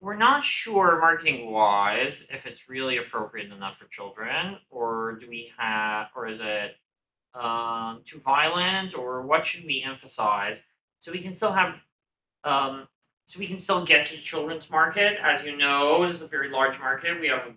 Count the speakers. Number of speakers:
1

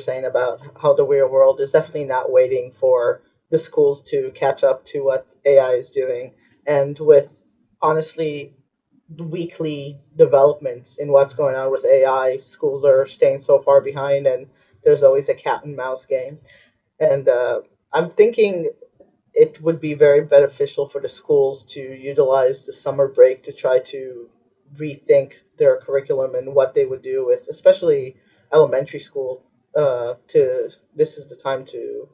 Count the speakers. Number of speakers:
1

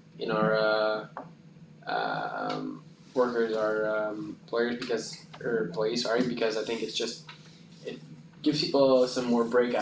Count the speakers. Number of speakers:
1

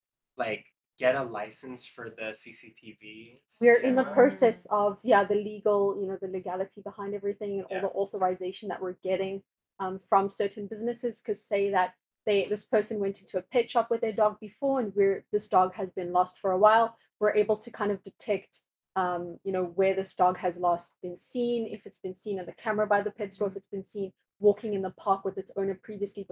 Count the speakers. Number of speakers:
2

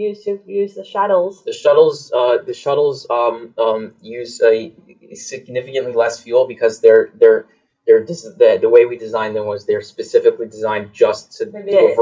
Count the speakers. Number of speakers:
2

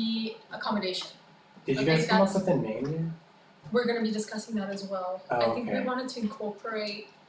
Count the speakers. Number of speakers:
2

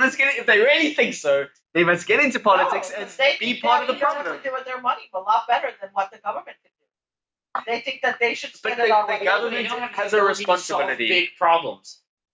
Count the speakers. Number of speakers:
3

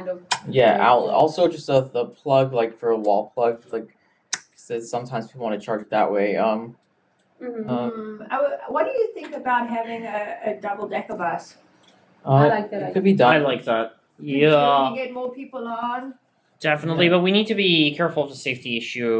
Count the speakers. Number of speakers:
4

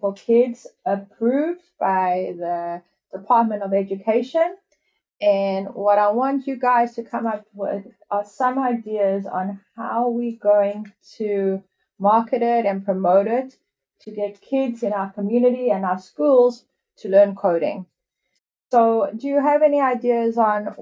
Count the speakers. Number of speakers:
1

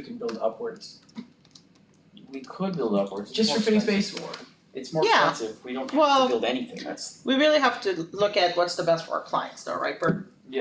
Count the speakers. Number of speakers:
3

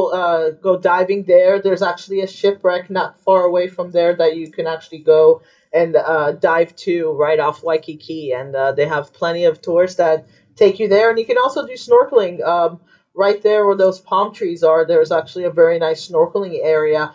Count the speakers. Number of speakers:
1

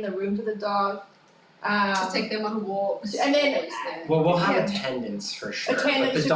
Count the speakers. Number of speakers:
3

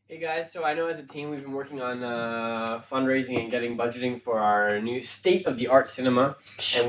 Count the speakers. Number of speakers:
1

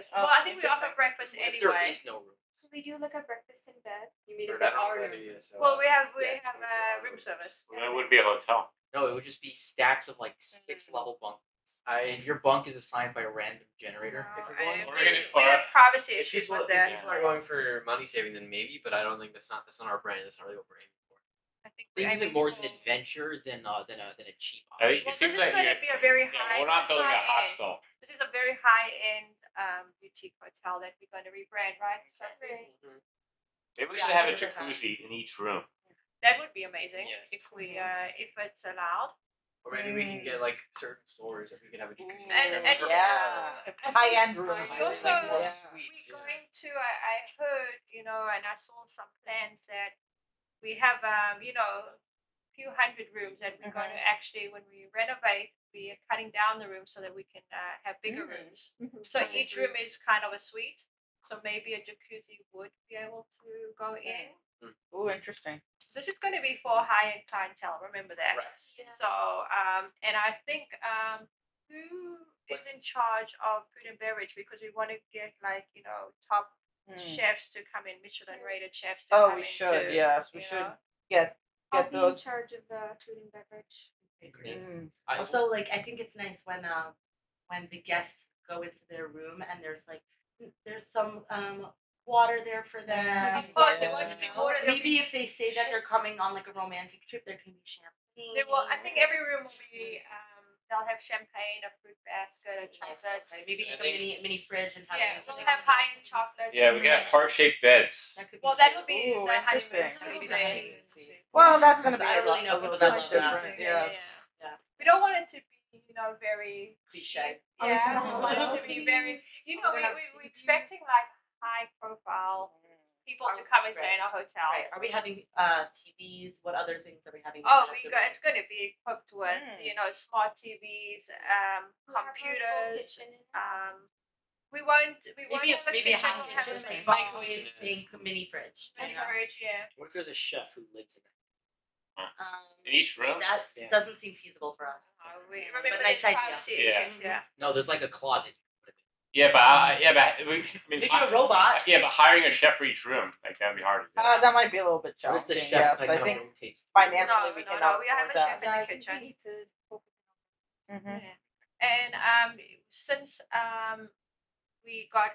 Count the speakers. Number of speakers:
8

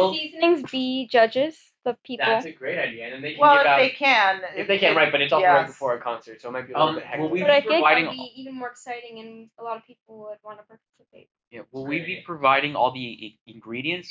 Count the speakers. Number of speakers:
4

